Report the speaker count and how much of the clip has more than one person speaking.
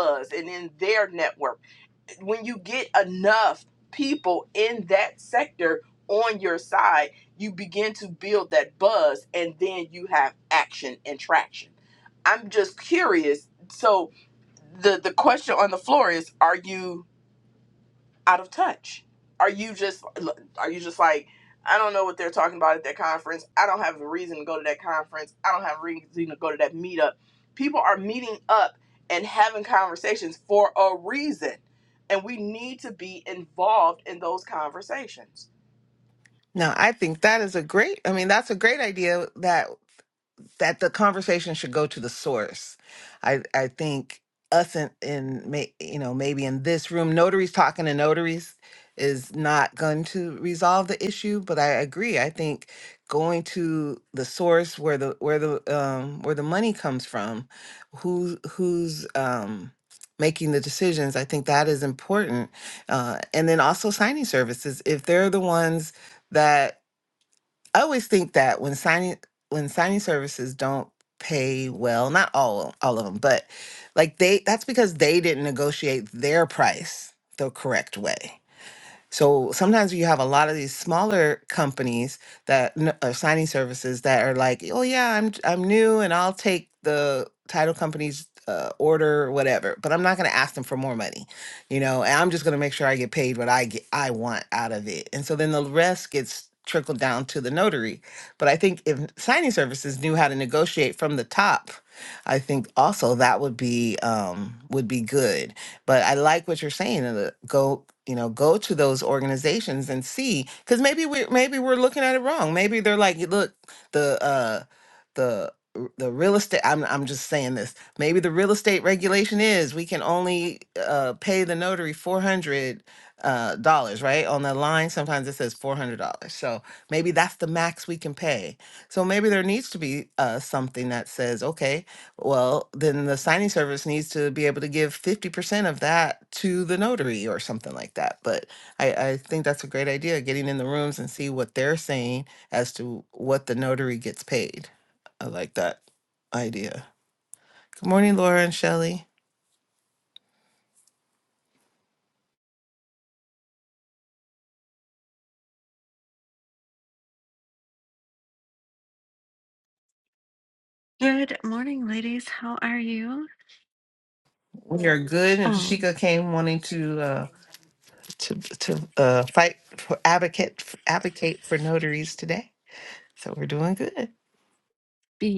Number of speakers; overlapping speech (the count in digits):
3, under 1%